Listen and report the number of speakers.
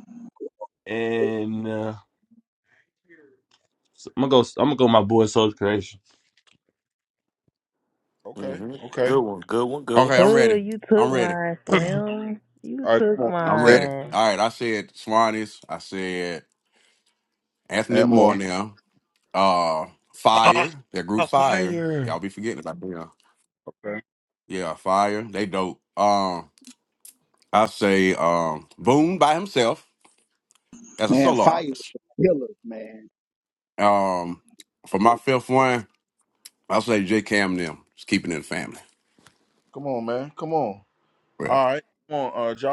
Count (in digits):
6